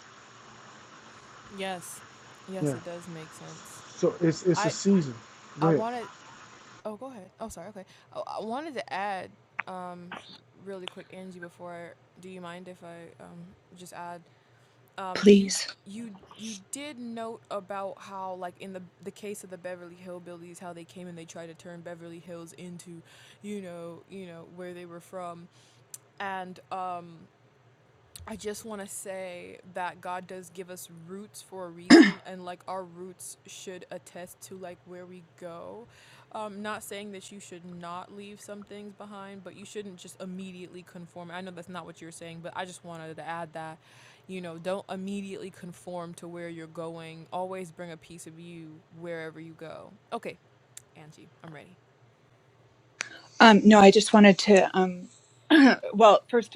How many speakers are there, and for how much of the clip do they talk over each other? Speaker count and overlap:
three, about 2%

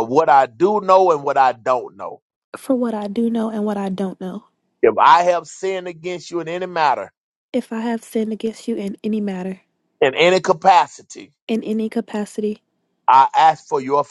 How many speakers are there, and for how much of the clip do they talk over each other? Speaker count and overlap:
two, no overlap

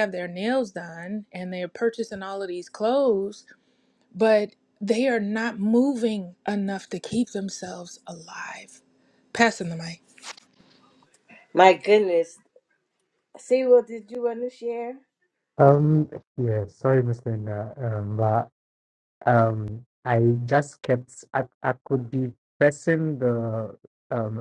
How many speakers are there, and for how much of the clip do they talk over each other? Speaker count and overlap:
three, no overlap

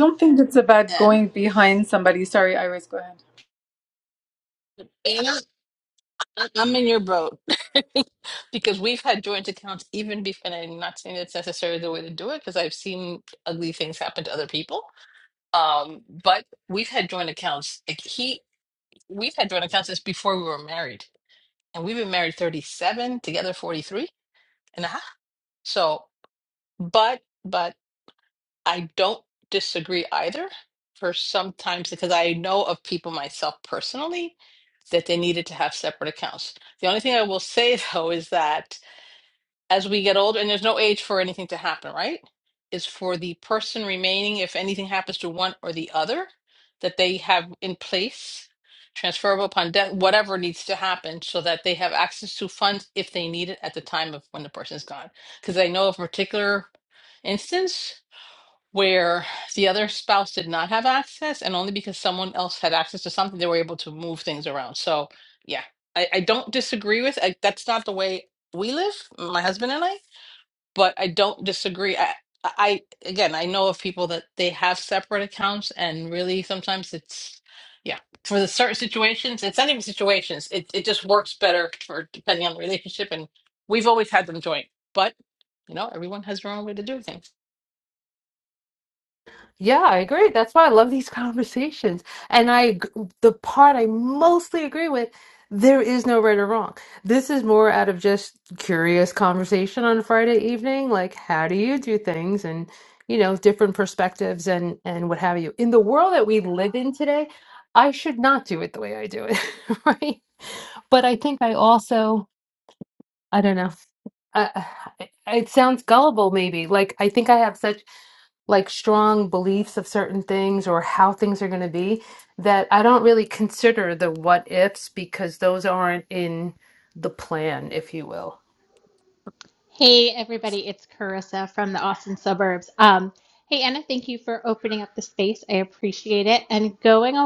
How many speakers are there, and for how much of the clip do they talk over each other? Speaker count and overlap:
four, under 1%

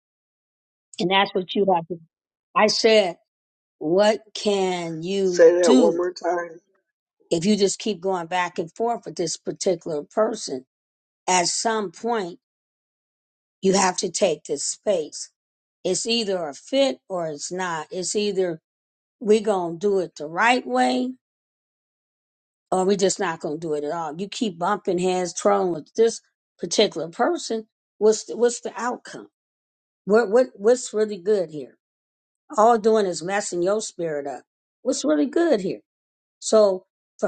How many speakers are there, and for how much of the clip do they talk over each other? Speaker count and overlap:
two, about 2%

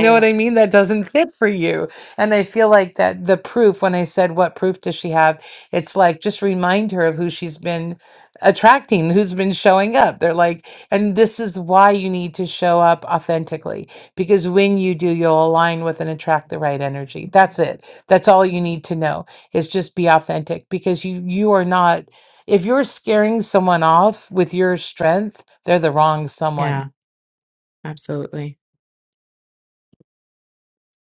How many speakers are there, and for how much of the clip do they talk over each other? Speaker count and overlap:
two, about 1%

